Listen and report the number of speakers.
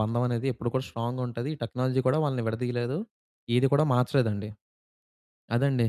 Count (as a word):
one